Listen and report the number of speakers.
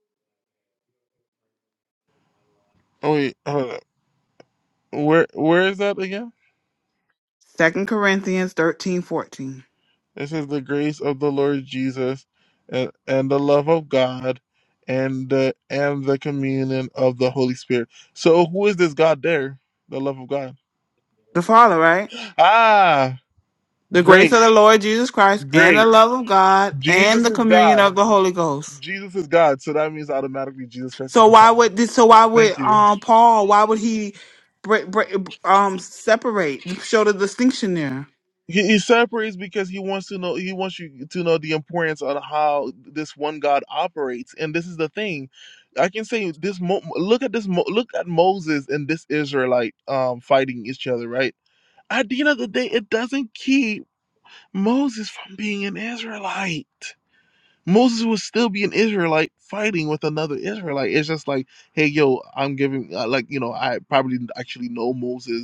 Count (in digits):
2